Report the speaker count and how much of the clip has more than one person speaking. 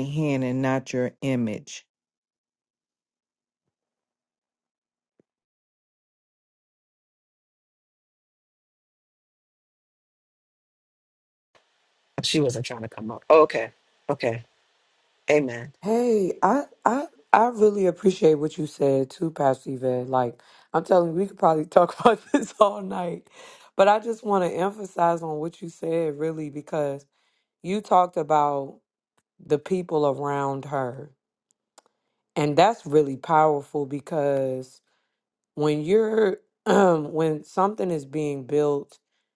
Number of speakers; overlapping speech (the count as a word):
three, no overlap